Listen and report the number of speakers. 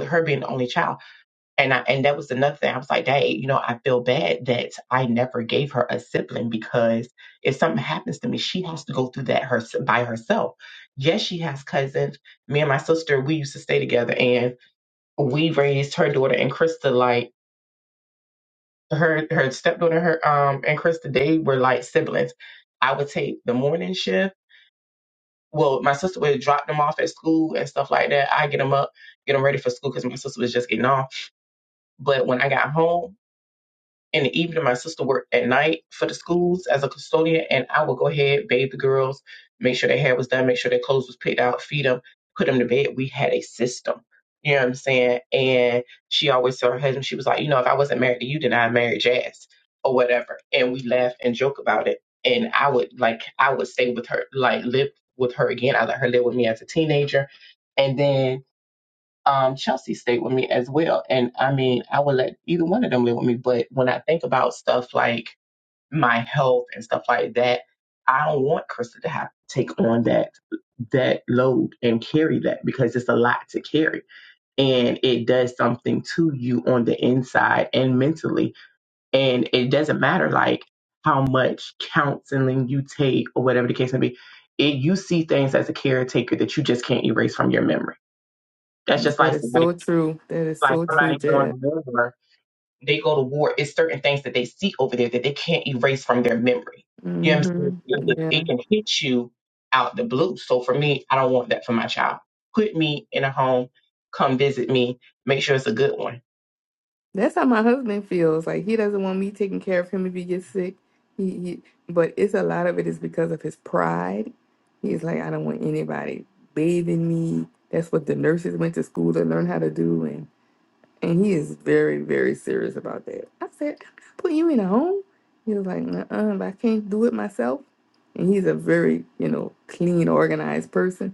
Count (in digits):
2